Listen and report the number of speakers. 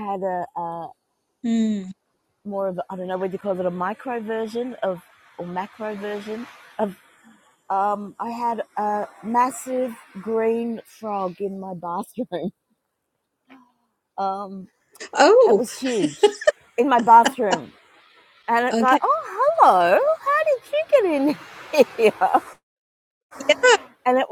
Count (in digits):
2